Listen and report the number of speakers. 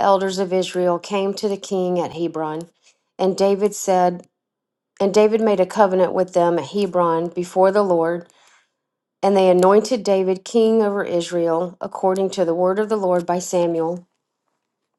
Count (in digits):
1